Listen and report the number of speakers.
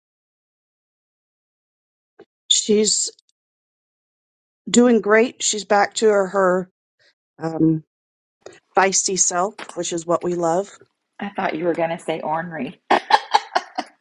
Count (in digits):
2